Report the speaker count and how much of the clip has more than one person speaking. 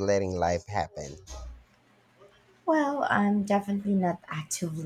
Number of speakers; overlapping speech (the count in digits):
2, no overlap